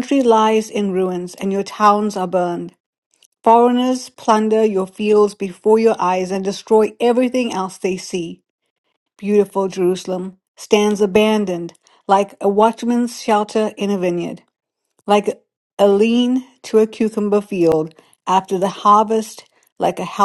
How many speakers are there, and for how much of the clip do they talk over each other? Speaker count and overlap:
one, no overlap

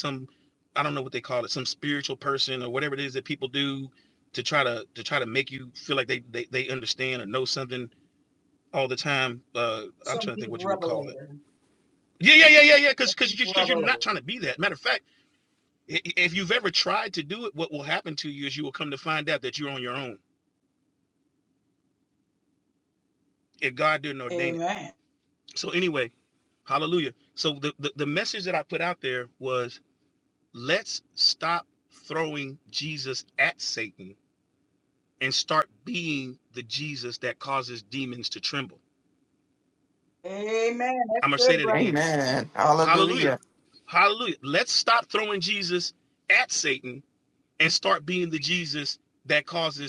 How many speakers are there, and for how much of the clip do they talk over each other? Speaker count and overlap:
three, about 7%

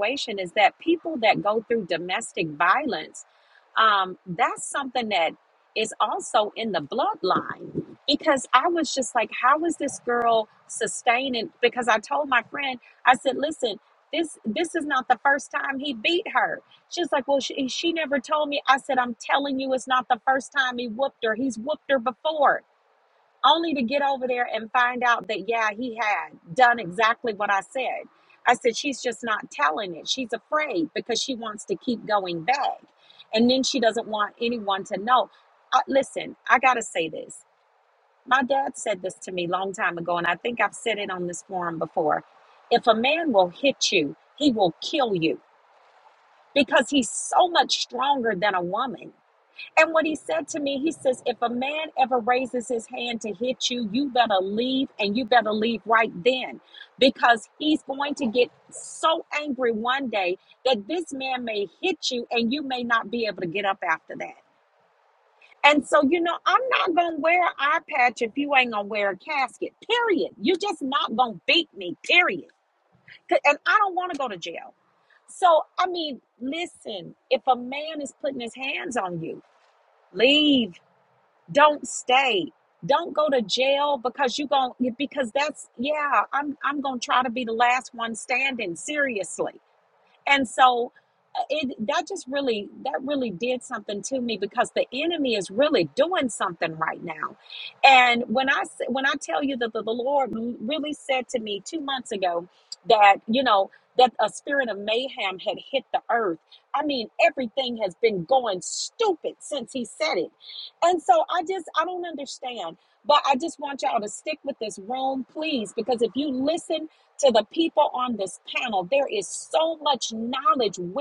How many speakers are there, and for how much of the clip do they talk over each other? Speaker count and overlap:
one, no overlap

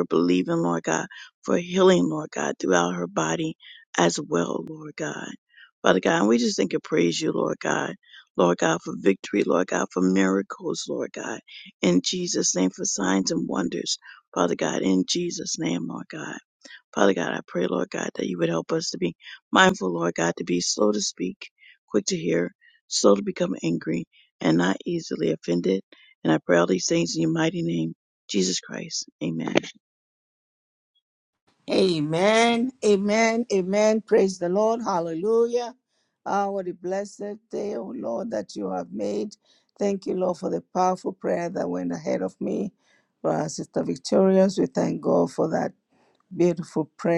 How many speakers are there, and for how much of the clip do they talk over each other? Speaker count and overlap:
two, no overlap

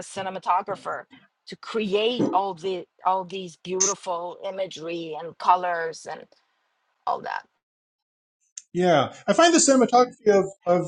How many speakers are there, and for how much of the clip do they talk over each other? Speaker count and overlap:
two, no overlap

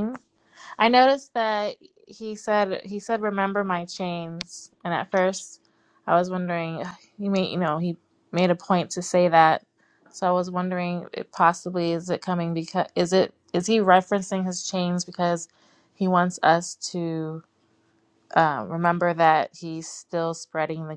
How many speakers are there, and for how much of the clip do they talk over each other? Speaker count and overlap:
one, no overlap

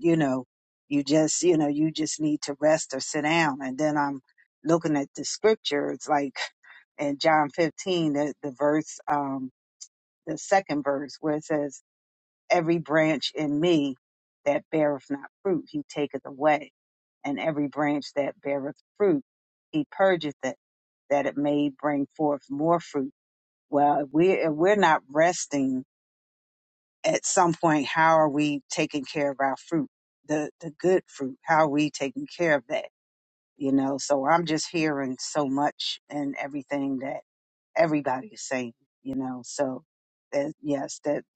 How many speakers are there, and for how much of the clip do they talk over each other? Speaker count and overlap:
one, no overlap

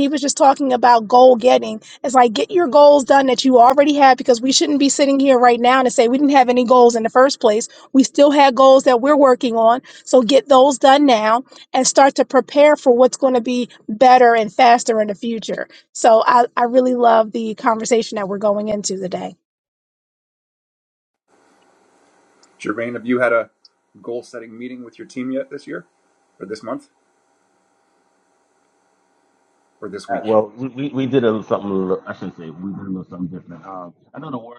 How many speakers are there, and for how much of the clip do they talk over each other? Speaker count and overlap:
three, about 1%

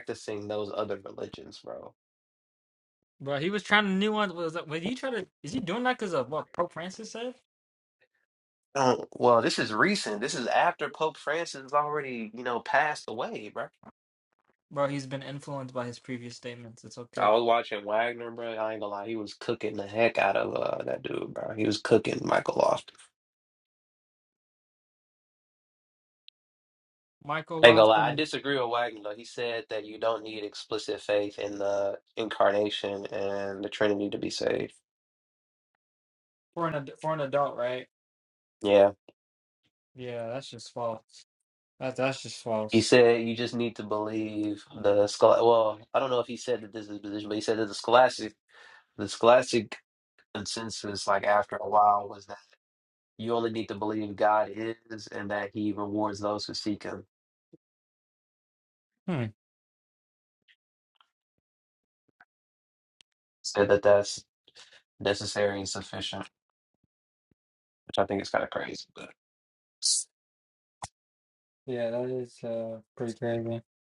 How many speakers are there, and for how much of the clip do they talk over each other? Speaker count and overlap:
two, about 1%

